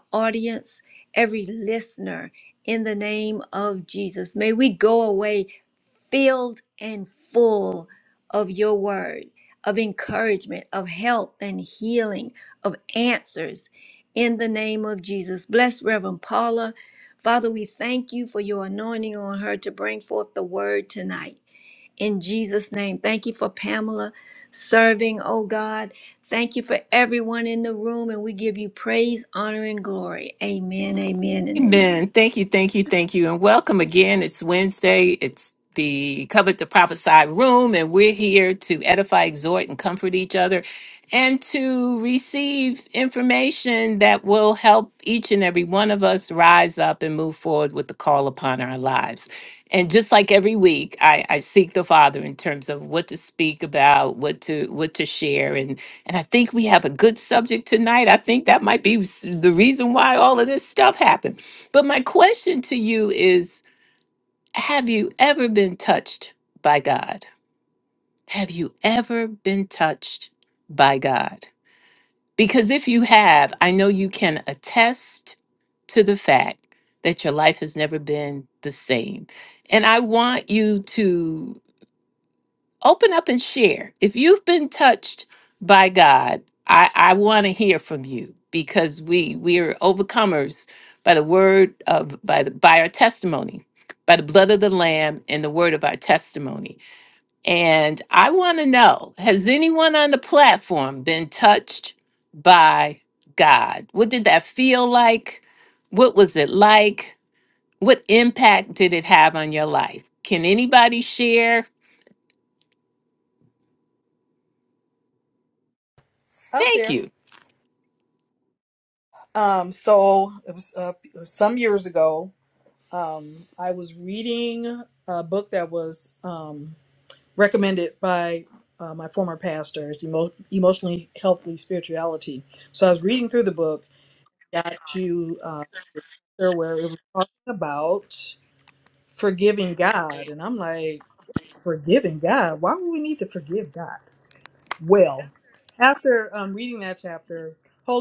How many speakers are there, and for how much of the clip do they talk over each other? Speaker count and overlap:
three, about 1%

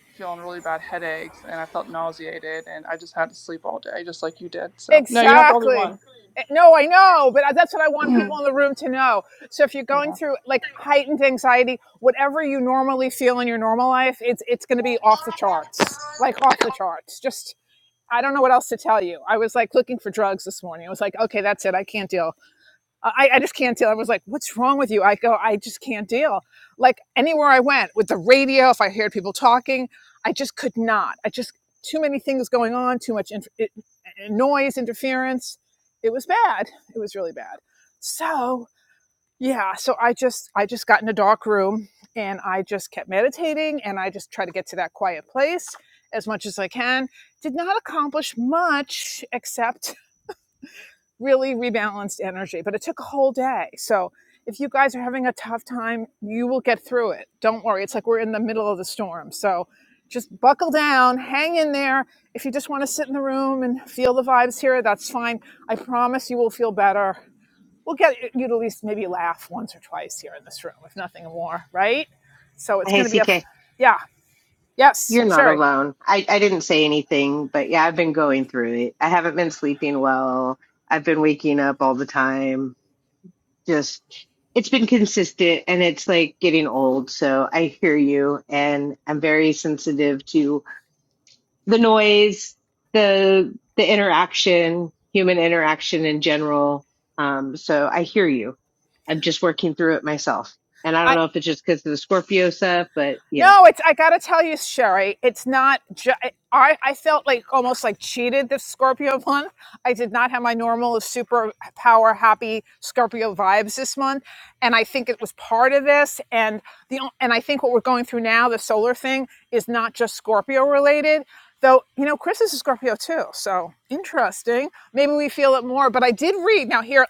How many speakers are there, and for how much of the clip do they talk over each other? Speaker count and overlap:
three, about 2%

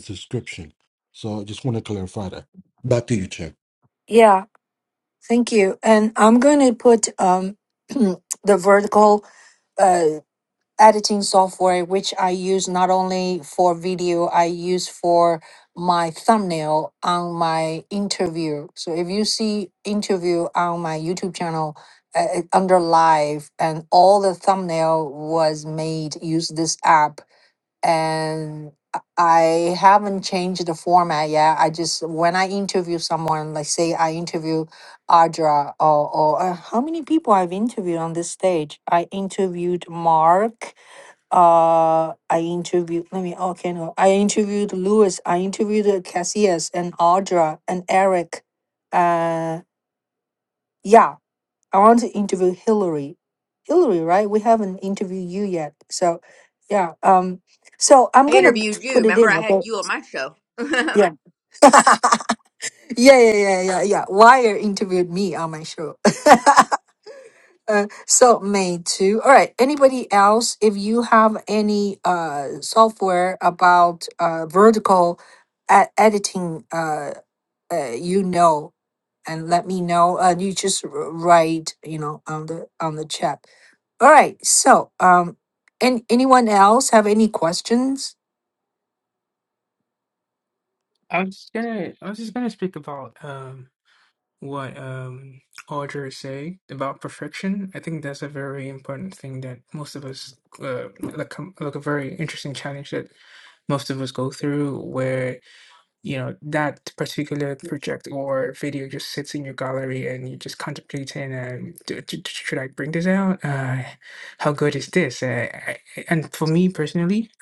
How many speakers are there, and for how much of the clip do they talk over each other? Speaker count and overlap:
four, about 1%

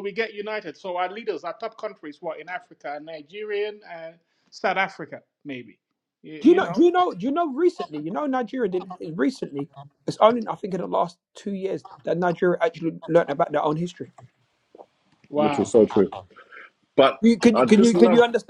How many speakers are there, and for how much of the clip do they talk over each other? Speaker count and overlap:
three, about 8%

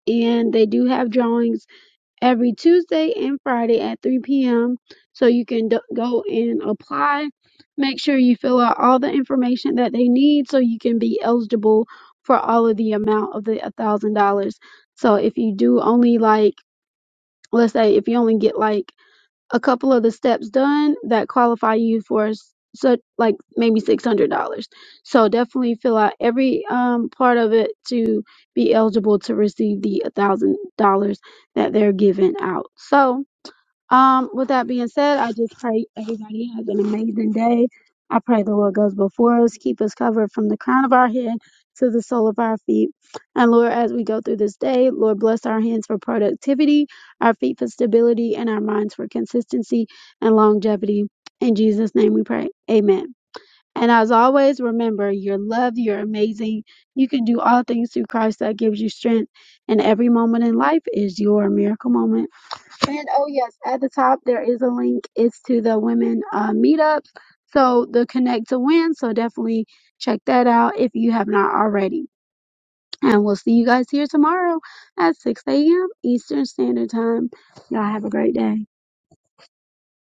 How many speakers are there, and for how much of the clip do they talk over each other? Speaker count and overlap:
one, no overlap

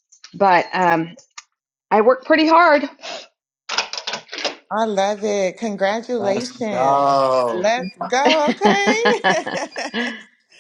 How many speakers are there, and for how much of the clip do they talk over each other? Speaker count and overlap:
three, about 6%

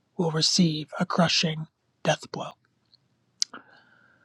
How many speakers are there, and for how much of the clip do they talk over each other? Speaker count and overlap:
one, no overlap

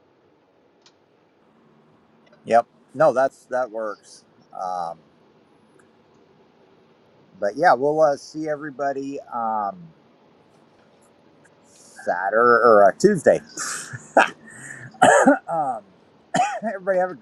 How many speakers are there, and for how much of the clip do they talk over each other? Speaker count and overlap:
one, no overlap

